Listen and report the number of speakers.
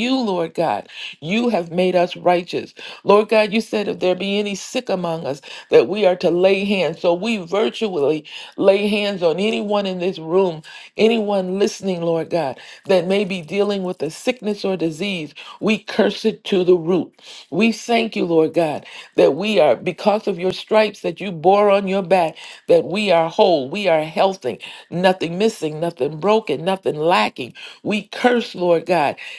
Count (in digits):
1